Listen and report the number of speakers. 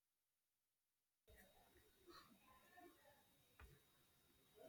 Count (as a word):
zero